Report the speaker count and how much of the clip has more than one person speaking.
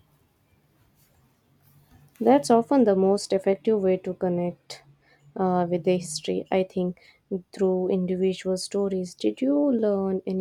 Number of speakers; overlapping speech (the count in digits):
1, no overlap